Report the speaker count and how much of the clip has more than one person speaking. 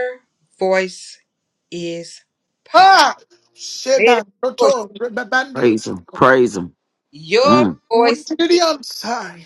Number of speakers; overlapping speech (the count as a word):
three, about 16%